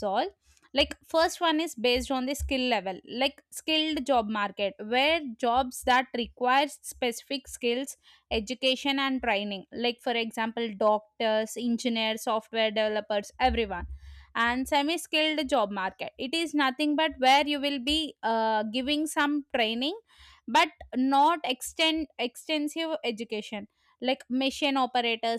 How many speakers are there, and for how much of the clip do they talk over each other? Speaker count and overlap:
one, no overlap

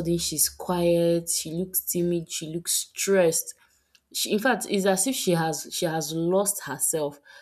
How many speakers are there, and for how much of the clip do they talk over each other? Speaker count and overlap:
one, no overlap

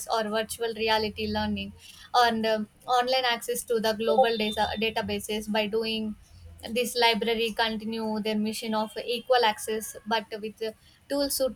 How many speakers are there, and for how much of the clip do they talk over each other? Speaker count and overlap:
one, no overlap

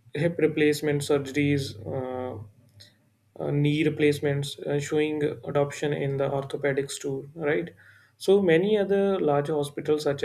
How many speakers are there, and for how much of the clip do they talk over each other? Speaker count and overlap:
one, no overlap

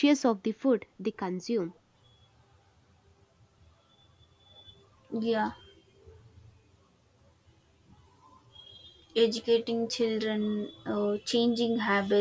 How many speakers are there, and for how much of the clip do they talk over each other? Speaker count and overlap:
two, no overlap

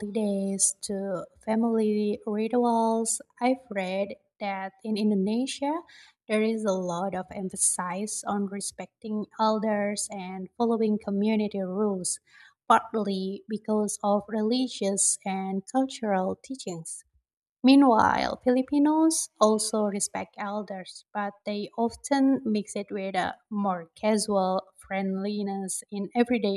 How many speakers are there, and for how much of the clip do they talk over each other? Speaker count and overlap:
one, no overlap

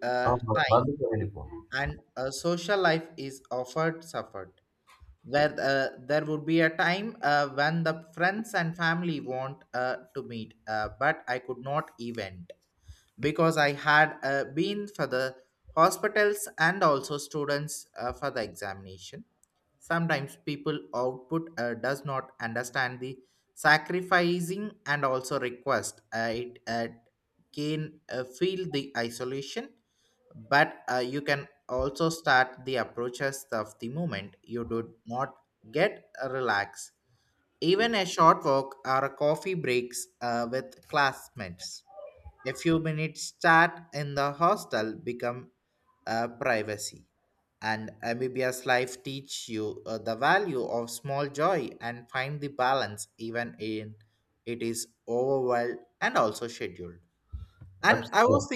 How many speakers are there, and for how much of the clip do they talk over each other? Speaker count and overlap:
two, about 2%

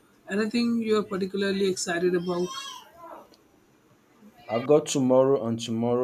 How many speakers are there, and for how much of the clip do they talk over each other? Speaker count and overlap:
two, no overlap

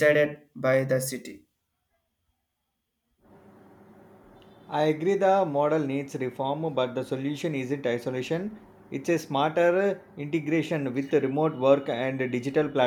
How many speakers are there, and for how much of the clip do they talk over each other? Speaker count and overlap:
two, no overlap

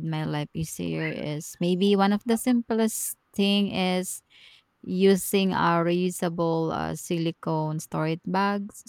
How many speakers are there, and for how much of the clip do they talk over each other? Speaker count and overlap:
one, no overlap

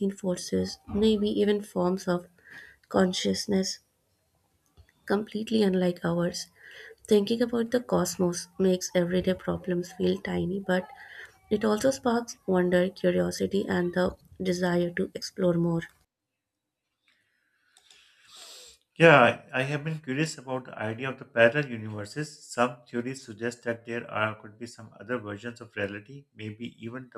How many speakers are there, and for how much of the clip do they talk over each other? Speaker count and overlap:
two, no overlap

